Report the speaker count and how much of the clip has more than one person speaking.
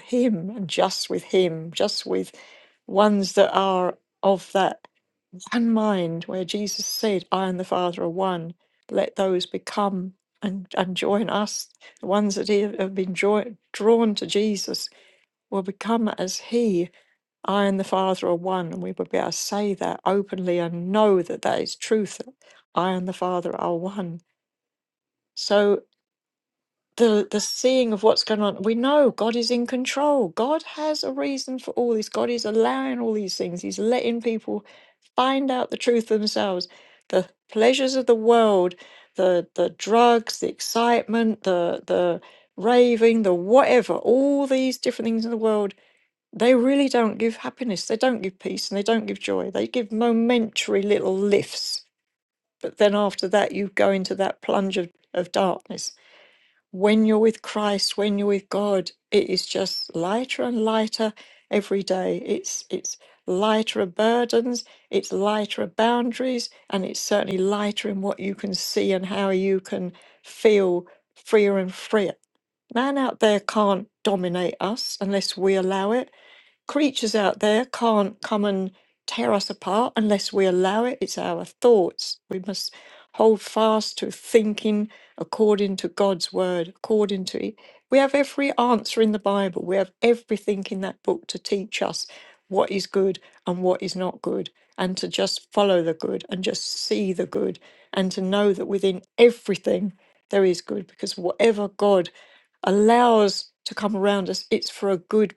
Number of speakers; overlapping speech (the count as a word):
one, no overlap